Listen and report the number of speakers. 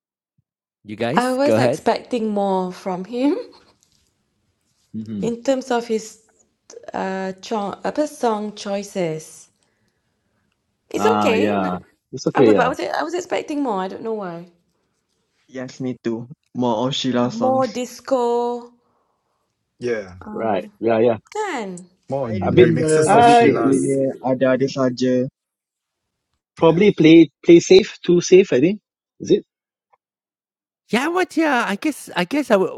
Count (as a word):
five